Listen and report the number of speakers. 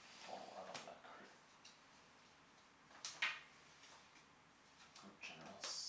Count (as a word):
one